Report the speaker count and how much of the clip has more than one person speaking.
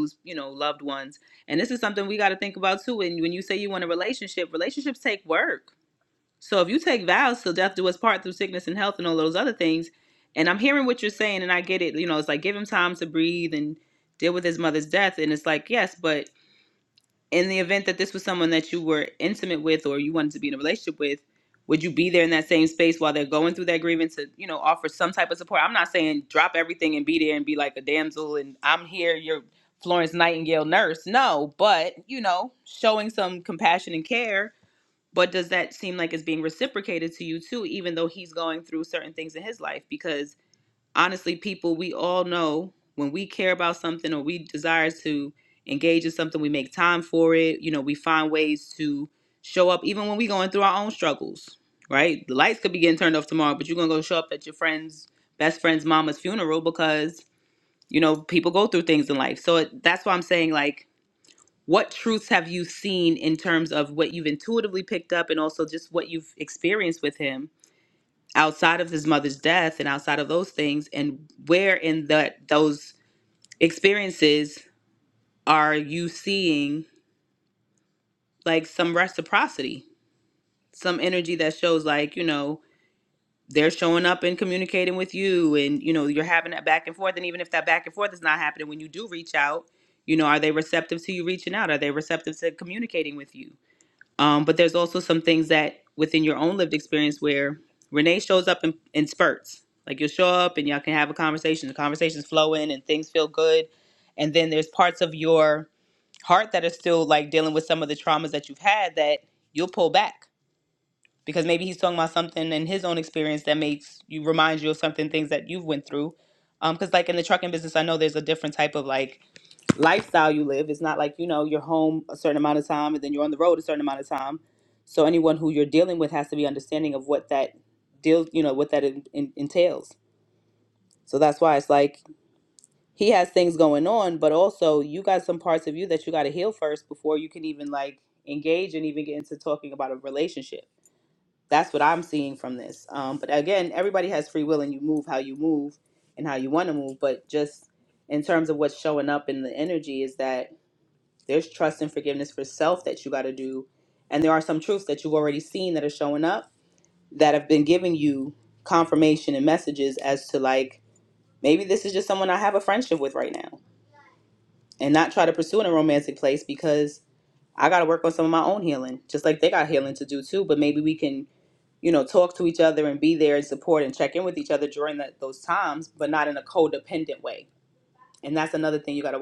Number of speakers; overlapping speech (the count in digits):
1, no overlap